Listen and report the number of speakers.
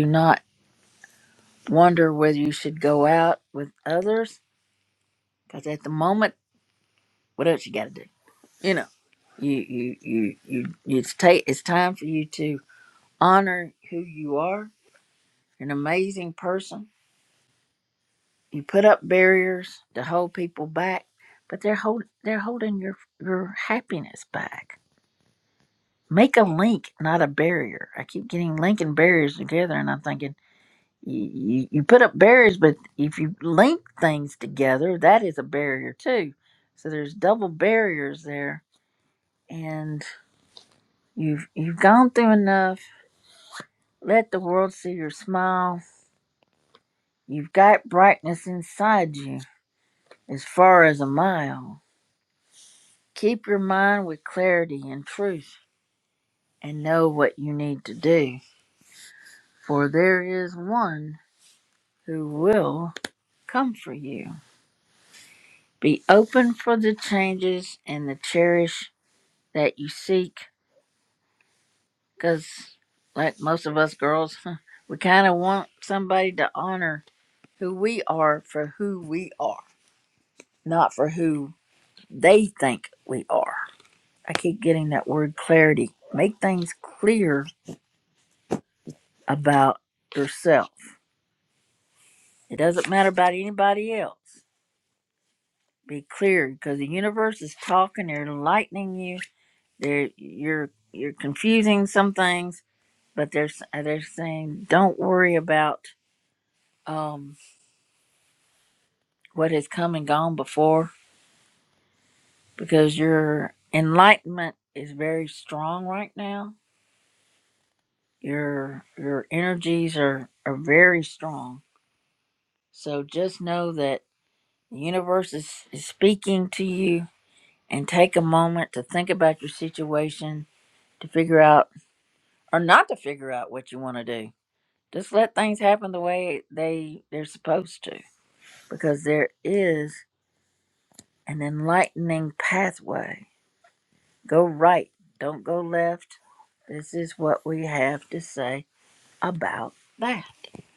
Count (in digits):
1